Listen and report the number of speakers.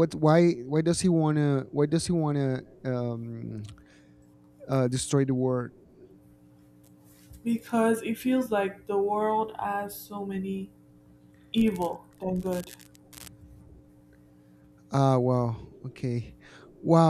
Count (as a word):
two